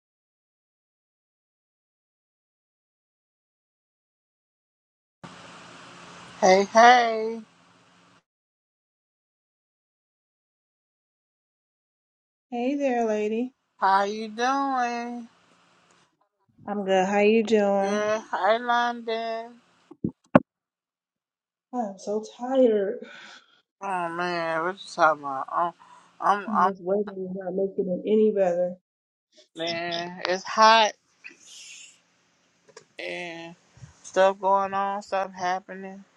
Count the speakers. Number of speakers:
two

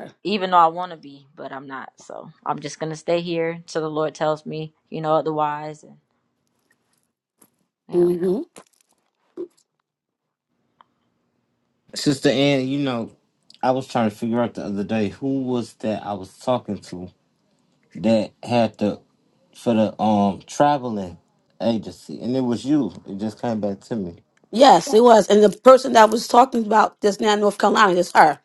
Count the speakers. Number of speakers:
three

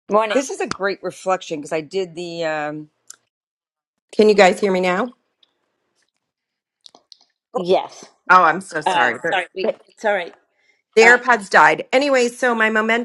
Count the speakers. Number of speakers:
three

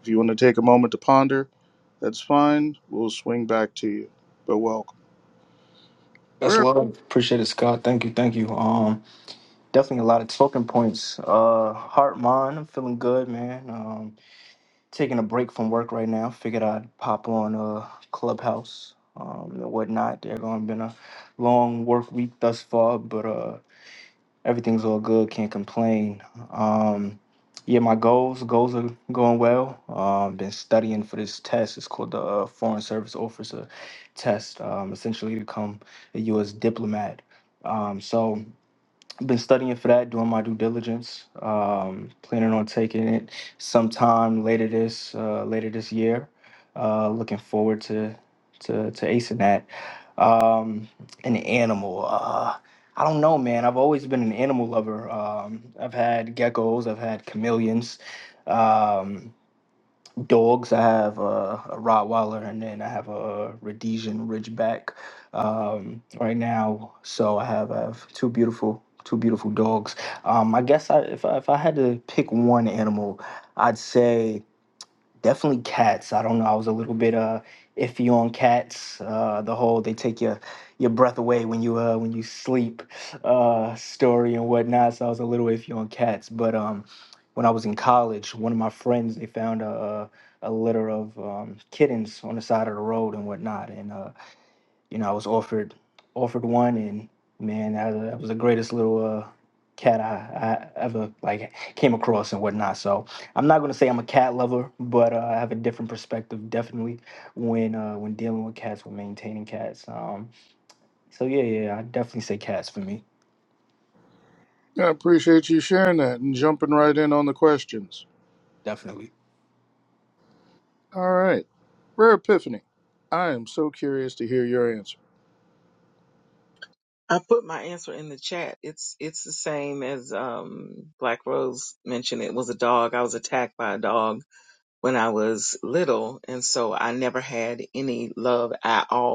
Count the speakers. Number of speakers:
three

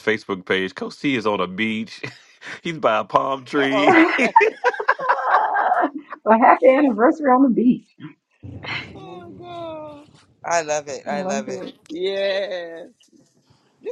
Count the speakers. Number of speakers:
four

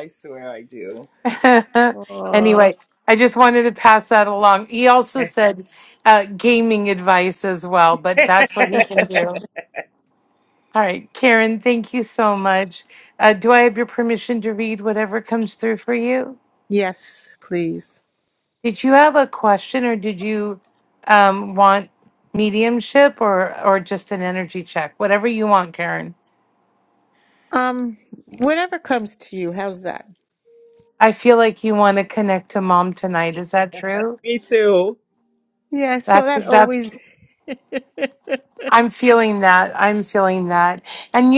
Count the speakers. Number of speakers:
three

